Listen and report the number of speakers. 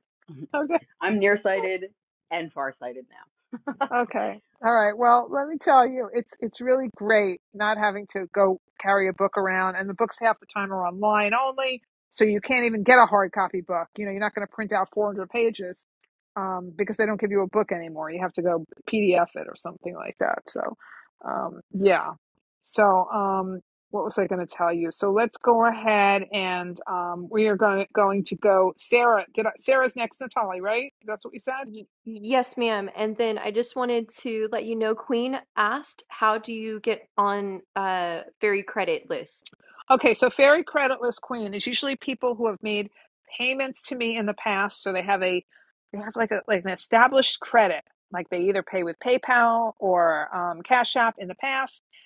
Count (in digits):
3